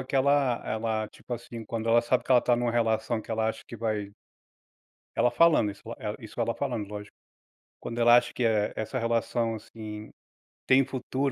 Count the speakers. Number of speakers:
one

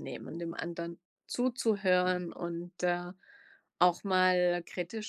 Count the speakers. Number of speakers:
one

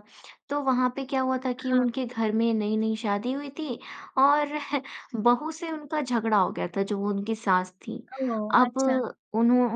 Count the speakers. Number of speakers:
two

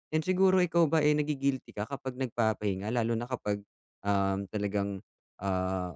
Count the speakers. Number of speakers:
one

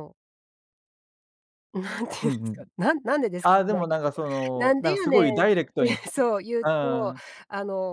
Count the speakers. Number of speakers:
two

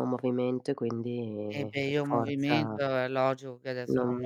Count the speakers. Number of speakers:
two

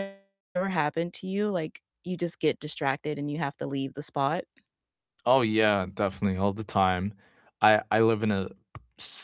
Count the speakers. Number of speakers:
two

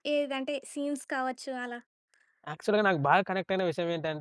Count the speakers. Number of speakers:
two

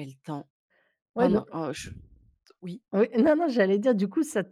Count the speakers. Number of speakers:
two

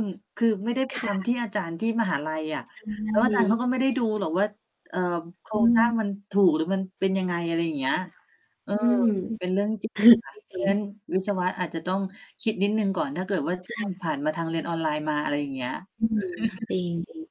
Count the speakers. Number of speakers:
two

